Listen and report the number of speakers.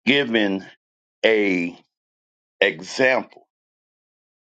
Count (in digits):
1